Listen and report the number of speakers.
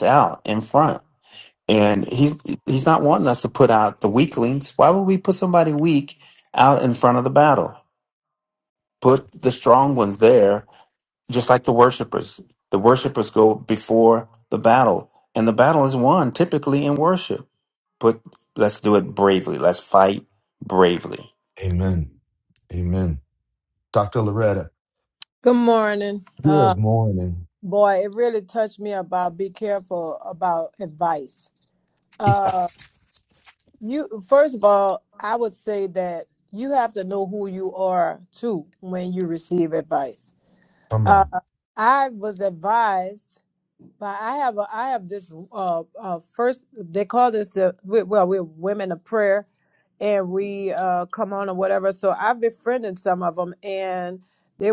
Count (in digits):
3